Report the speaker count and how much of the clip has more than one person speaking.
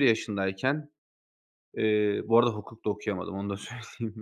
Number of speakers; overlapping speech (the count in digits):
1, no overlap